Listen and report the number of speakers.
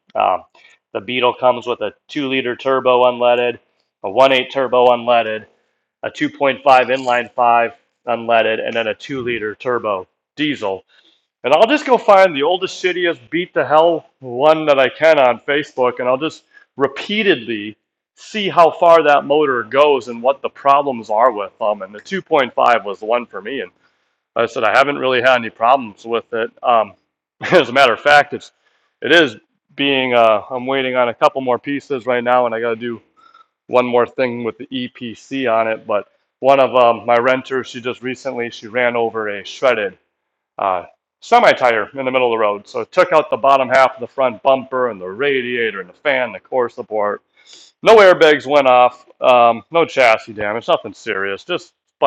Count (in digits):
1